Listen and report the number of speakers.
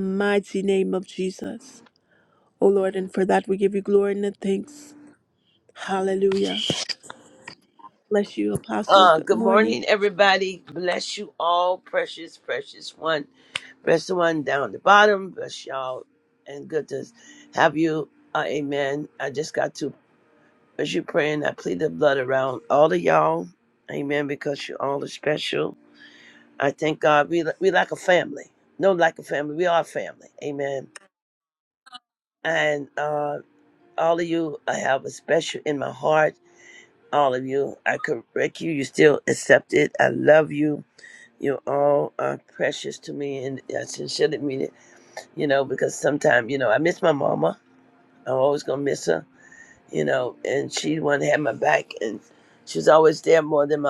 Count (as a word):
two